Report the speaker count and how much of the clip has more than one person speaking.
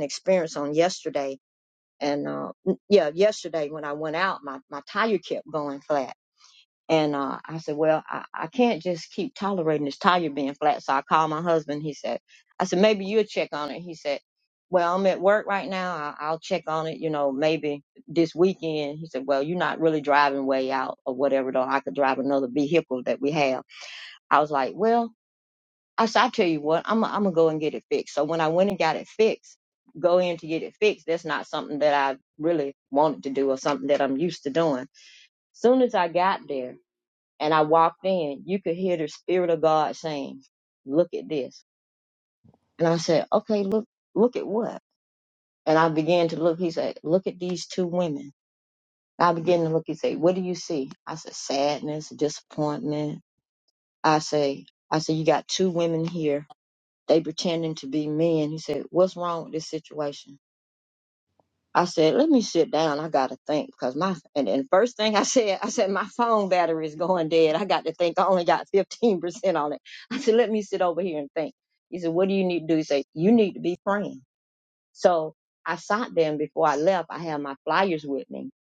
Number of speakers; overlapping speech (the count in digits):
1, no overlap